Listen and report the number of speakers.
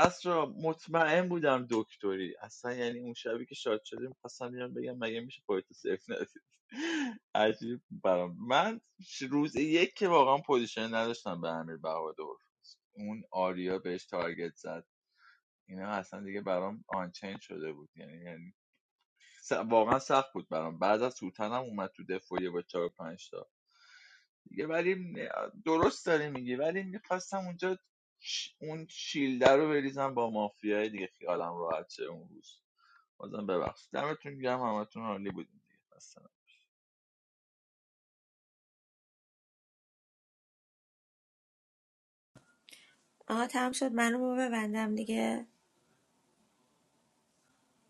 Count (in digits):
2